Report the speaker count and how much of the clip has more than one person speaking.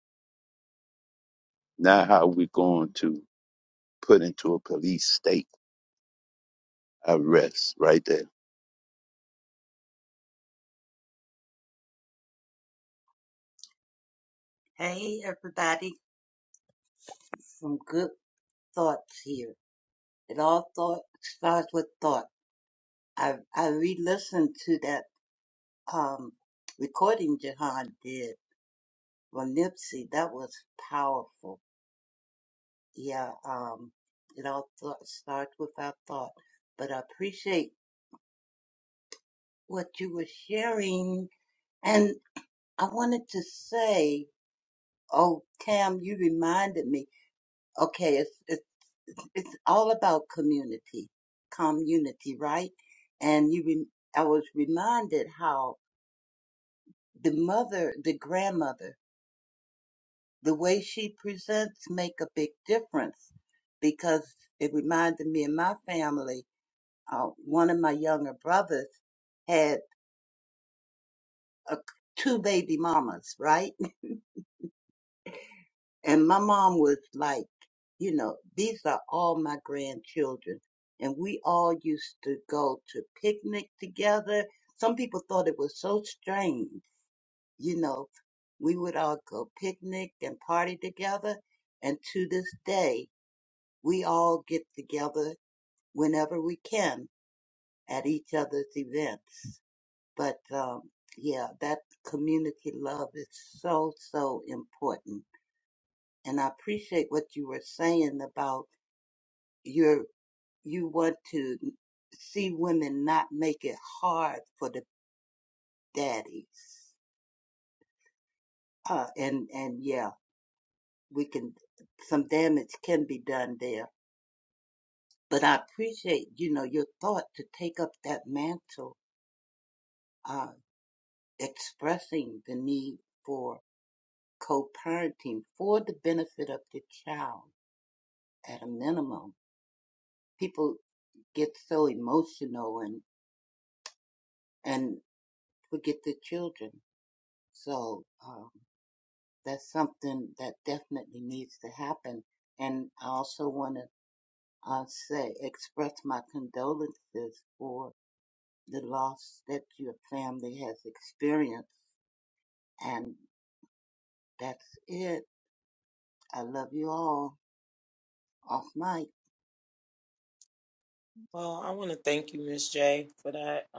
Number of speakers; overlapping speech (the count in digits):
3, no overlap